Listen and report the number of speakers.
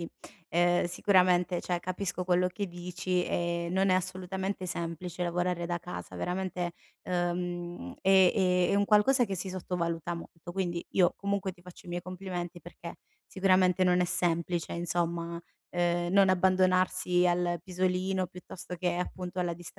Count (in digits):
1